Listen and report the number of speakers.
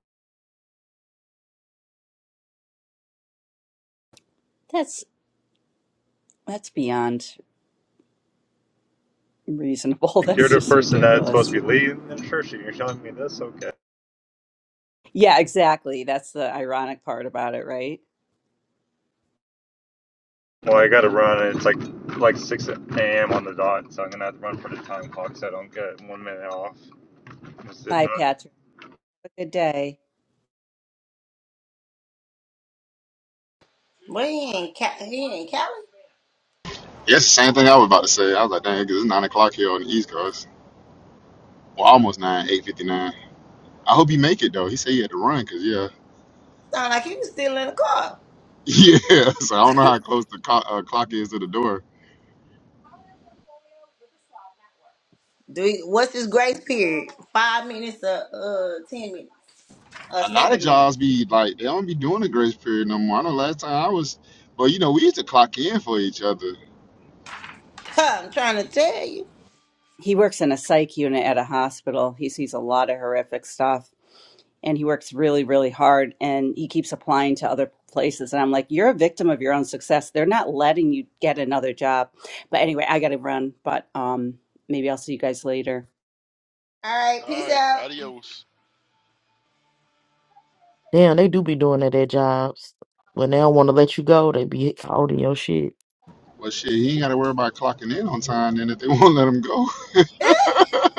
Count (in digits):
6